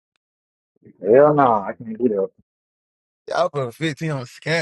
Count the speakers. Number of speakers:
2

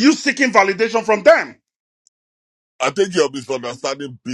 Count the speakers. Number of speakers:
2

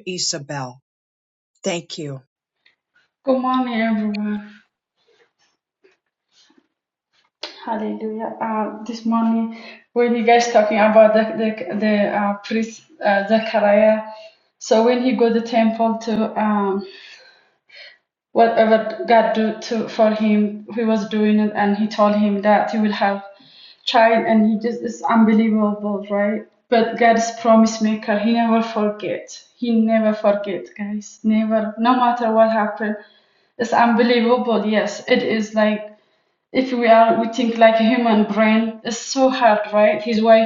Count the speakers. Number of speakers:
2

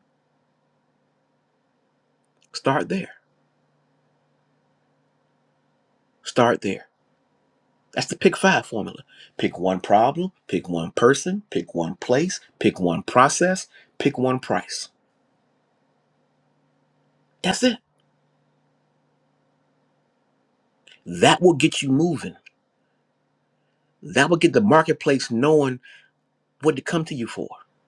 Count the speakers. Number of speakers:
1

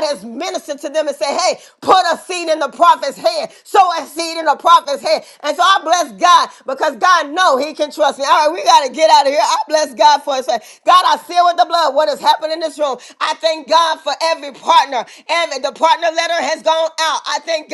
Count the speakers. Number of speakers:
1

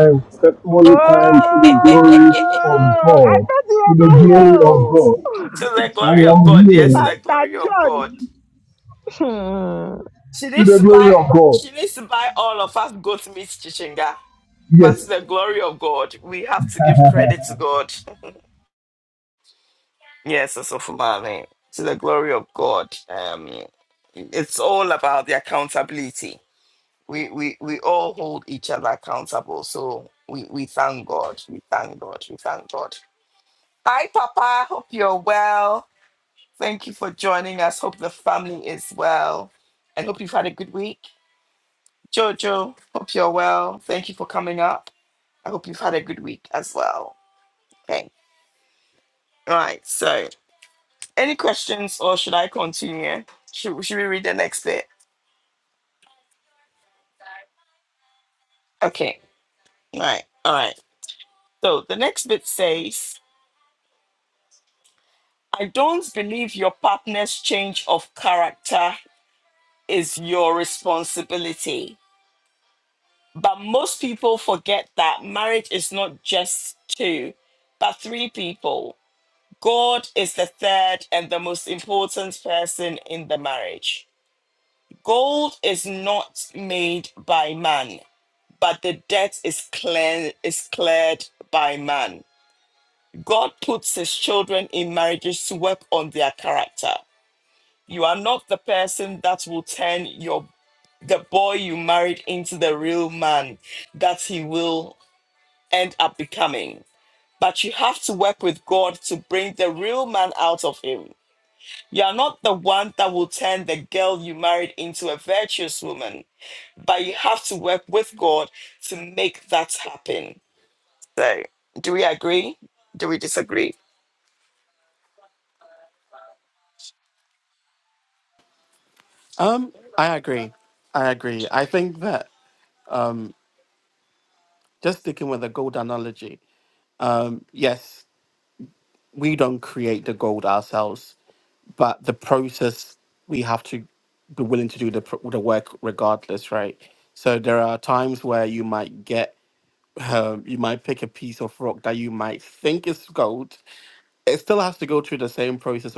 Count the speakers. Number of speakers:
4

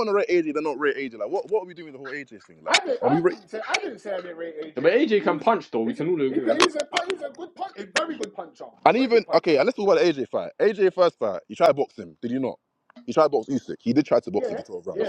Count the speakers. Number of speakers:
3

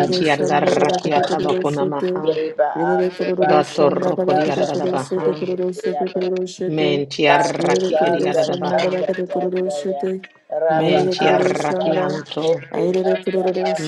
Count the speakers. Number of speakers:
3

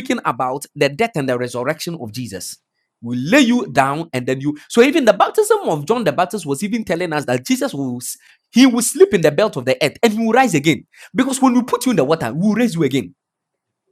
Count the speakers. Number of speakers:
1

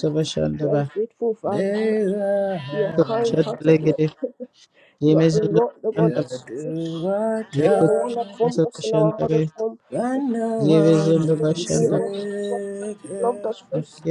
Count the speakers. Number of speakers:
3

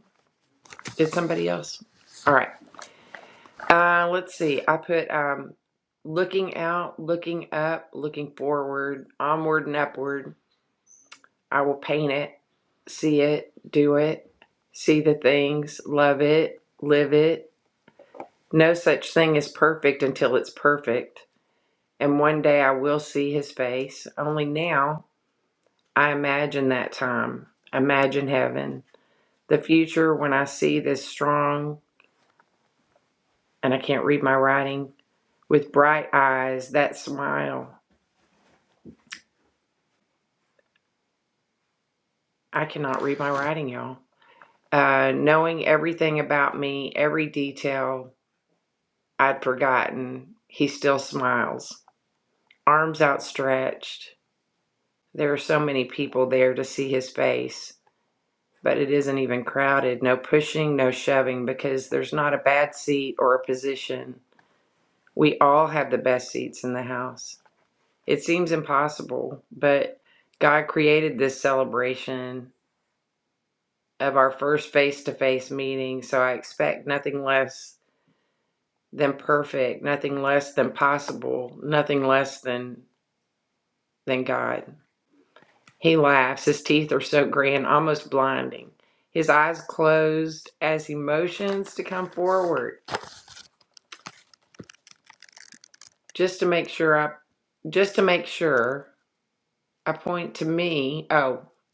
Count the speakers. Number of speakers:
1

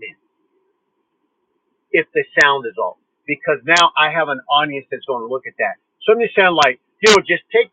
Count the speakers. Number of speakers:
1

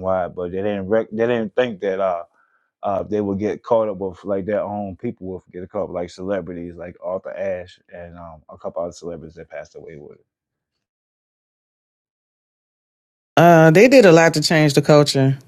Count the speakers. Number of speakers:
2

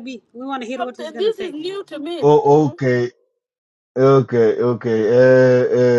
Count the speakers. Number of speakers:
3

